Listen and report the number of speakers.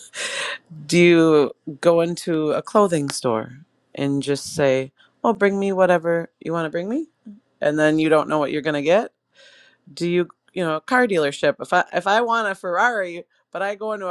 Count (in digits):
1